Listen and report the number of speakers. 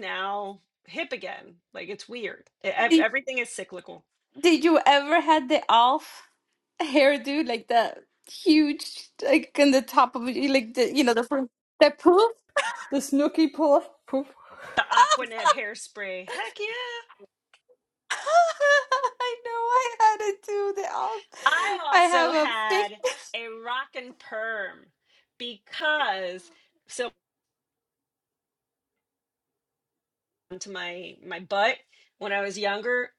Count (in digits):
3